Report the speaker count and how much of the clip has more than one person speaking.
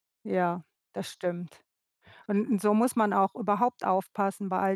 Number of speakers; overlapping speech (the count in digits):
1, no overlap